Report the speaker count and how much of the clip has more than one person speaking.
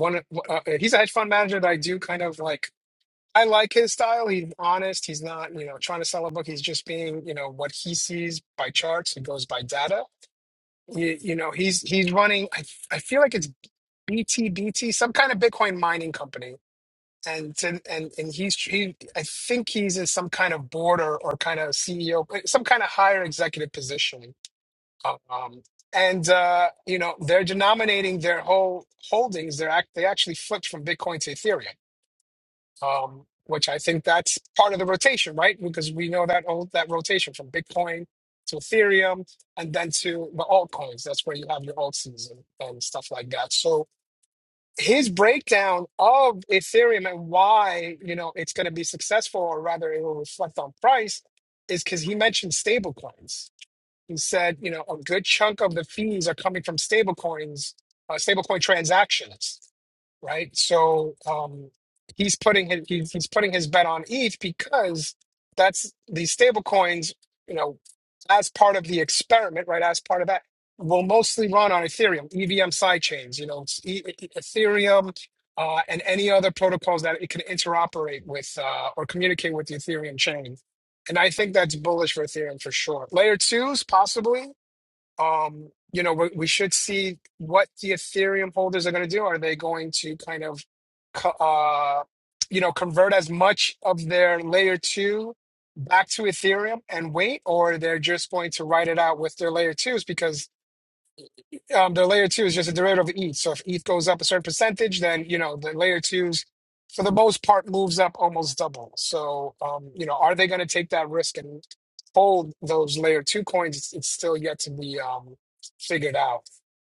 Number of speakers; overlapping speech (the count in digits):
1, no overlap